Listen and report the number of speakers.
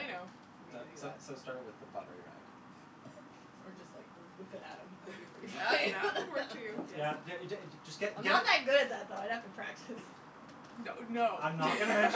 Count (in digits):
3